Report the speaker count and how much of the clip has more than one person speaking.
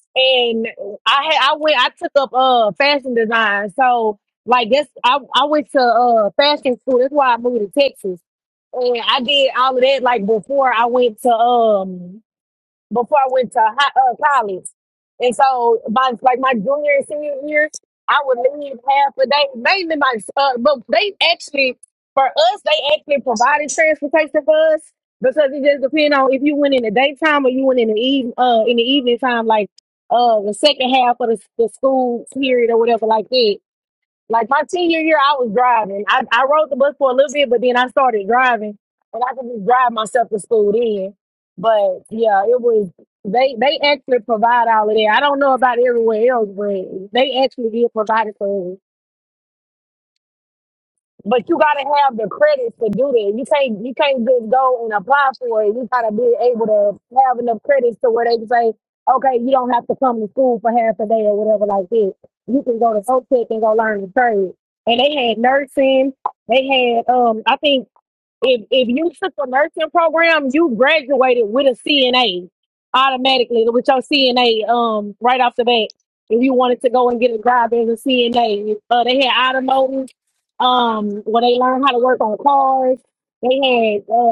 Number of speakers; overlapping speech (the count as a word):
one, no overlap